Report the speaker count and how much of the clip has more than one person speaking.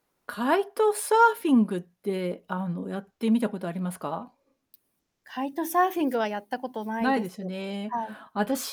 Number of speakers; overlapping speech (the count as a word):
two, about 6%